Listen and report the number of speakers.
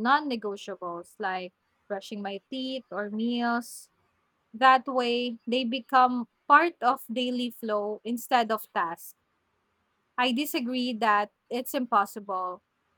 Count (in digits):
1